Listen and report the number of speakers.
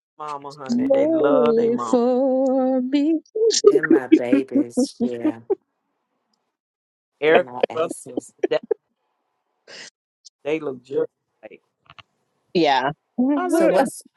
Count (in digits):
3